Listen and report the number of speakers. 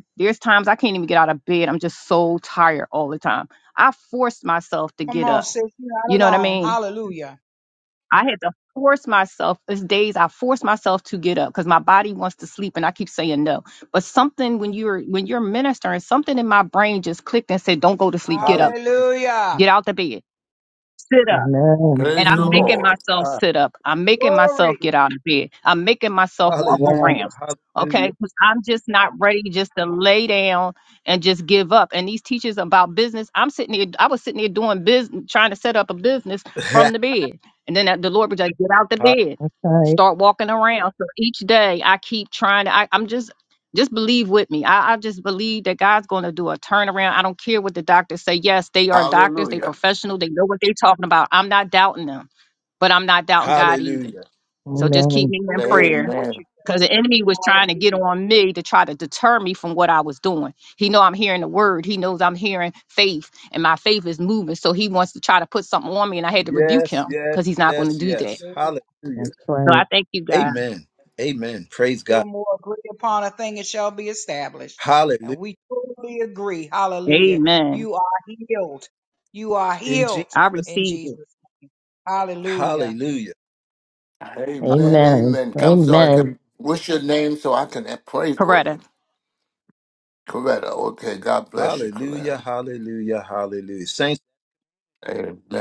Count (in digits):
5